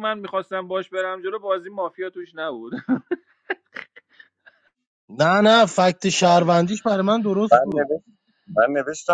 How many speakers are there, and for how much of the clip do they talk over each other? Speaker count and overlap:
3, about 5%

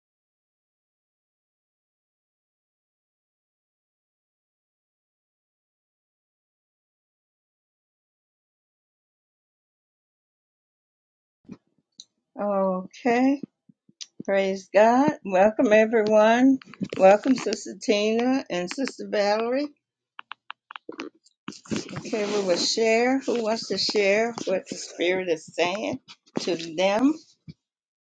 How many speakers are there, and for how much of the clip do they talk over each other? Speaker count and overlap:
1, no overlap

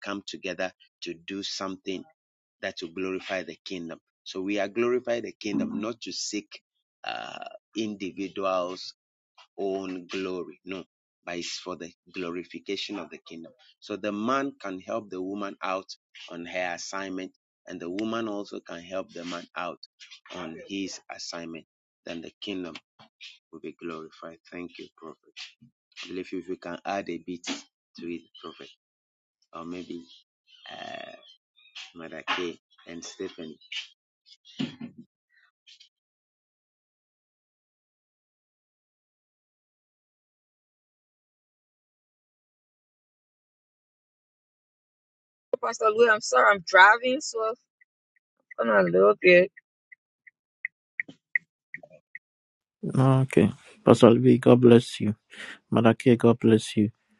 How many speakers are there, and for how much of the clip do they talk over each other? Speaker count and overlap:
3, no overlap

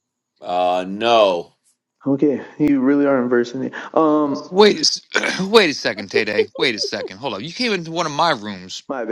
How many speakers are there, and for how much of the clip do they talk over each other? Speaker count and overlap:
3, no overlap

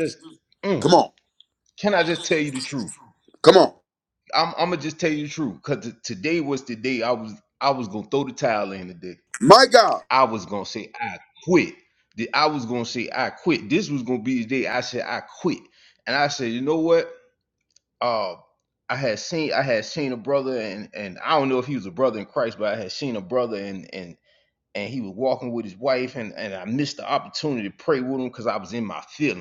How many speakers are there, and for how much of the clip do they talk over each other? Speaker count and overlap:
2, under 1%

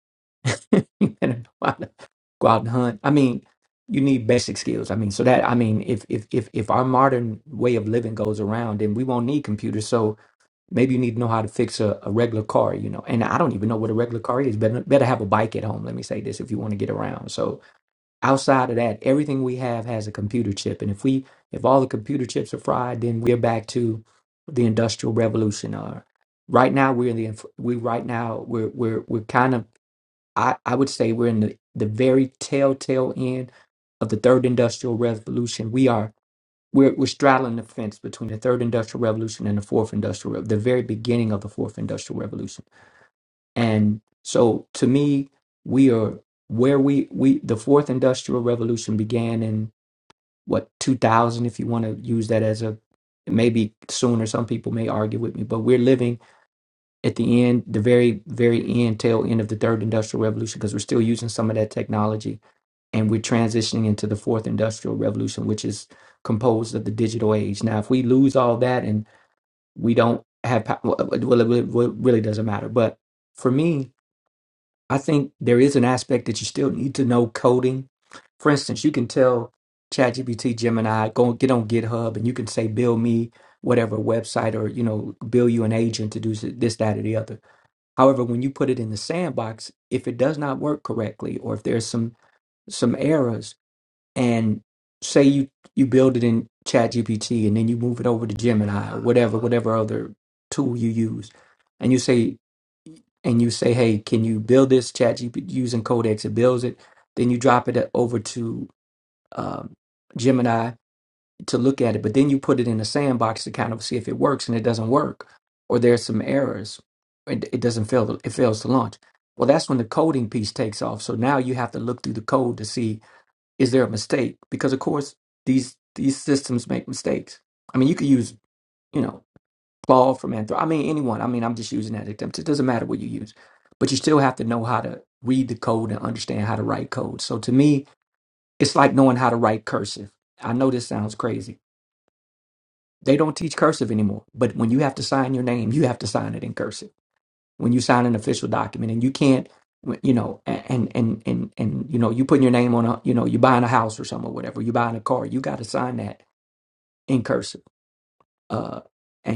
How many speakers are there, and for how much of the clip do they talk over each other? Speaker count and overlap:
1, no overlap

